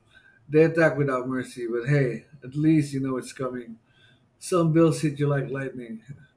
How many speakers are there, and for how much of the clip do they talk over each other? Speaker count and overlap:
one, no overlap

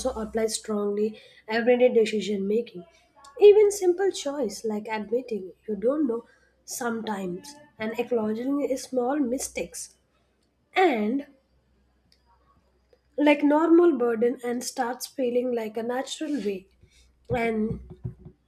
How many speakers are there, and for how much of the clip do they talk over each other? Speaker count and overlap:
one, no overlap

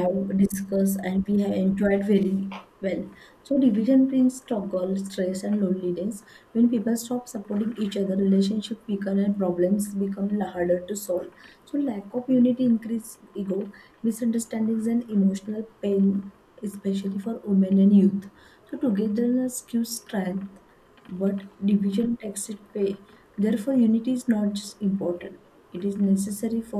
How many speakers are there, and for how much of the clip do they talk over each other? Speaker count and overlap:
one, no overlap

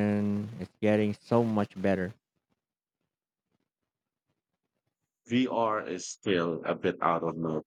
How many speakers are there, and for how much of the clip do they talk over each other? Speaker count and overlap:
two, no overlap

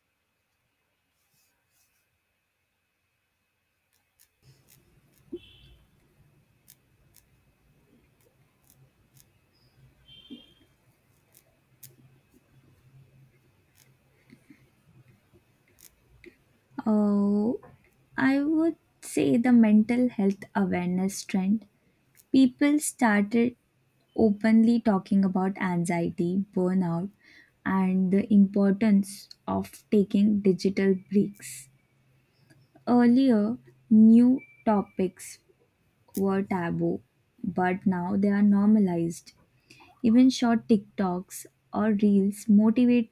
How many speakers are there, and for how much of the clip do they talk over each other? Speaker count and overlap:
one, no overlap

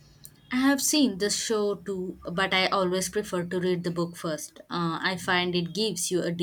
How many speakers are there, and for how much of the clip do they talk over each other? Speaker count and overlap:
one, no overlap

